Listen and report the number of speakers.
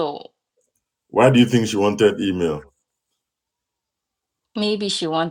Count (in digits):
2